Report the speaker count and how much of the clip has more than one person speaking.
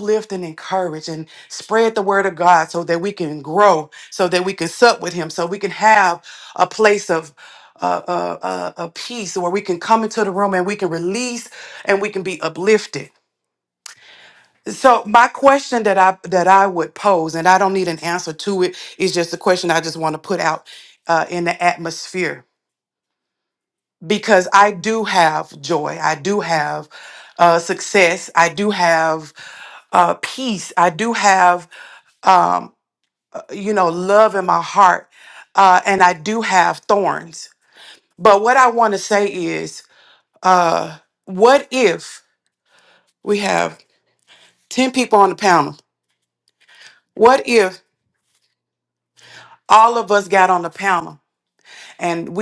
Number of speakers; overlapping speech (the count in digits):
1, no overlap